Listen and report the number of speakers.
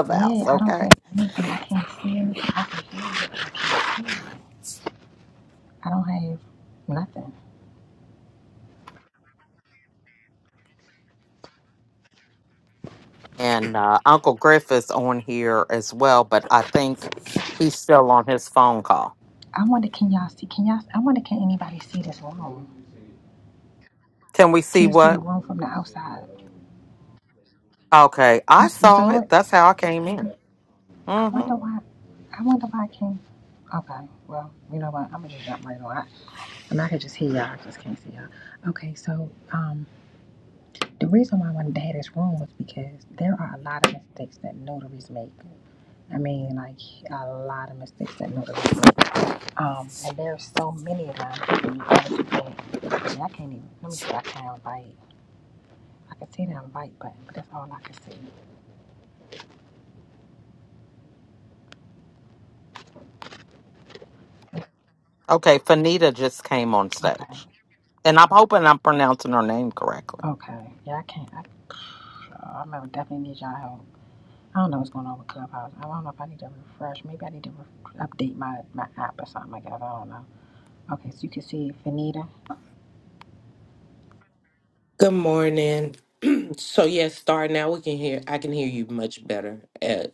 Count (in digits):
3